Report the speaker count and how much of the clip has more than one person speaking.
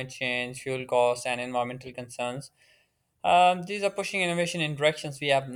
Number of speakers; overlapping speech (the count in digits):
1, no overlap